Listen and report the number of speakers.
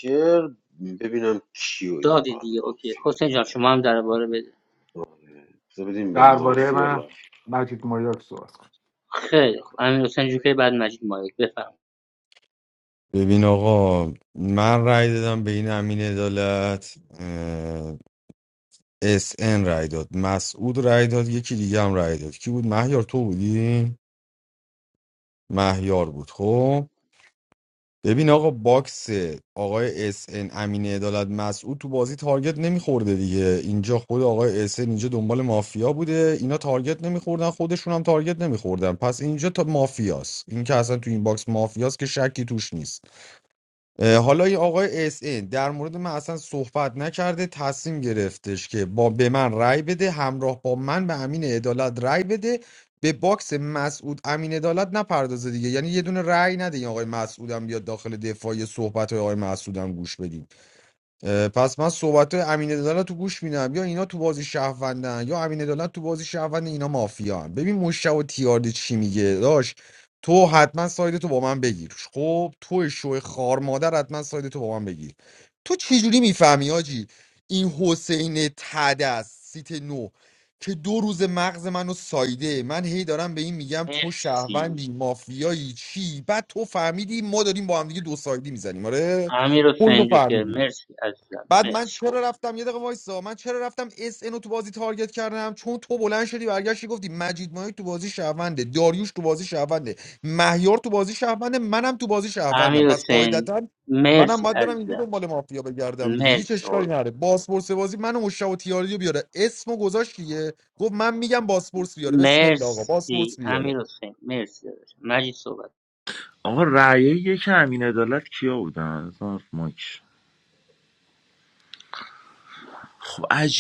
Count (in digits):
5